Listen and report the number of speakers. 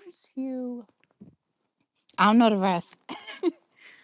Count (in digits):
1